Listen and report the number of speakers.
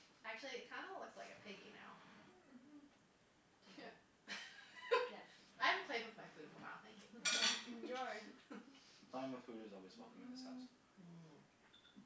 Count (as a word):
four